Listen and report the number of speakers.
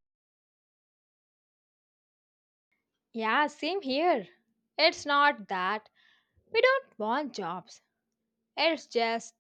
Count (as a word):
one